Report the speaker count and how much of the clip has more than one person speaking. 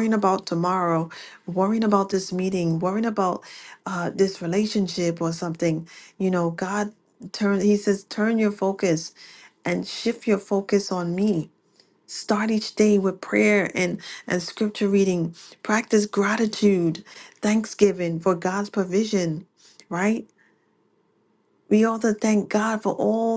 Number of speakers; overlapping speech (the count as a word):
one, no overlap